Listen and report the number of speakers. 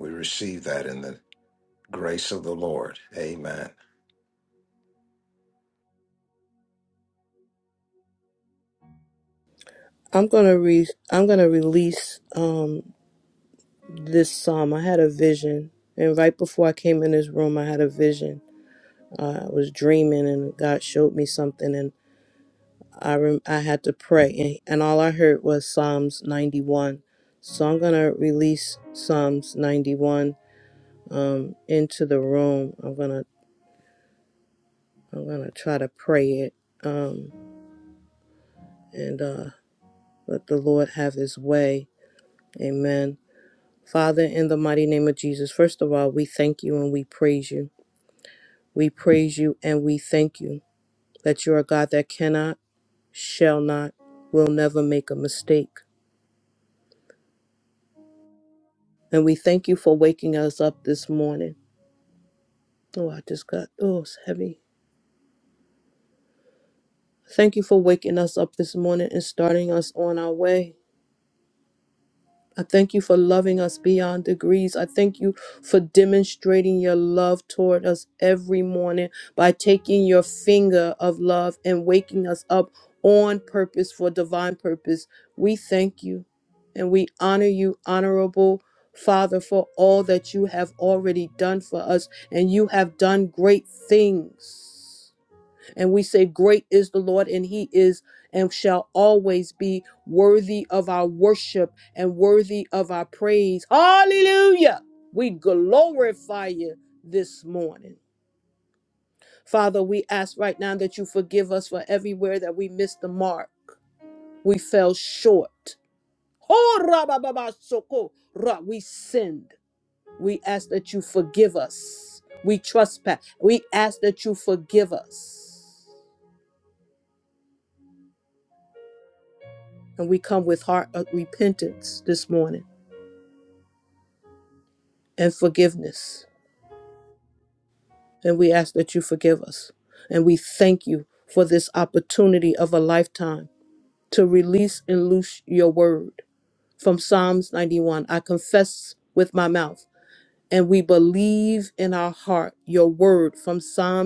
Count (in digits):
2